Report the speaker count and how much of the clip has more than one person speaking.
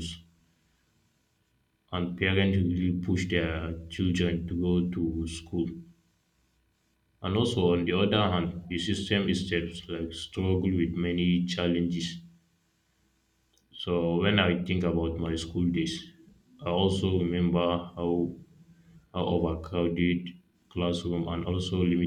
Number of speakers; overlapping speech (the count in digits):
1, no overlap